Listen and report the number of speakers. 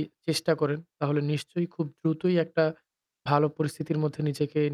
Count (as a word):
one